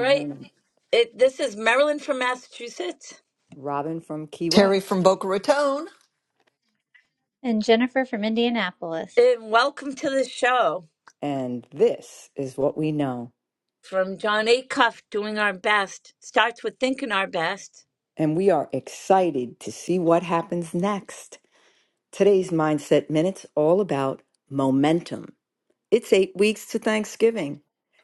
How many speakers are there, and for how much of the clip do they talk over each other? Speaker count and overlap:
4, about 3%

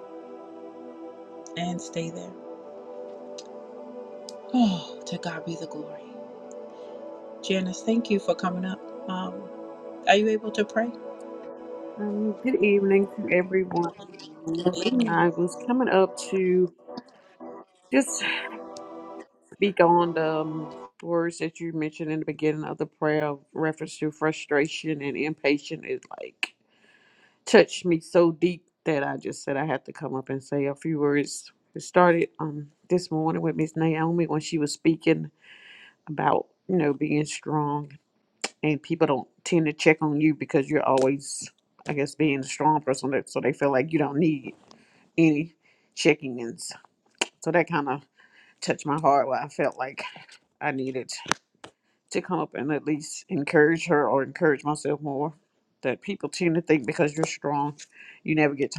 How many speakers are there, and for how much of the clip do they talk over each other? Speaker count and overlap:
2, under 1%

